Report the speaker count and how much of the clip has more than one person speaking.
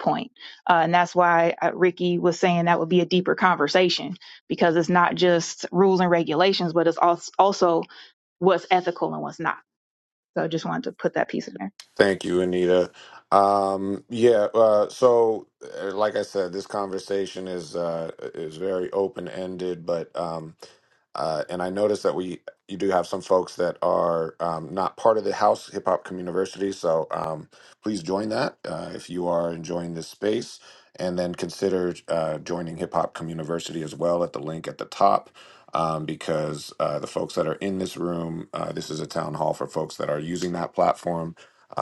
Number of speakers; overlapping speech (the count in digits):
2, no overlap